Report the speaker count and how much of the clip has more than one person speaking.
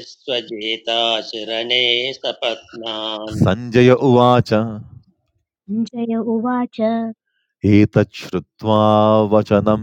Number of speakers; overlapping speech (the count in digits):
3, no overlap